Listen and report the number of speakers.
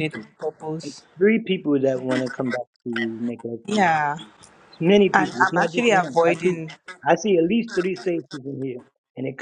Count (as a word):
two